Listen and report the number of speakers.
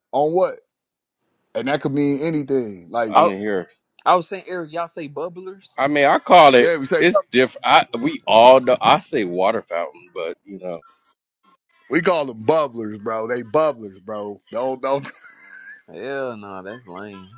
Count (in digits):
3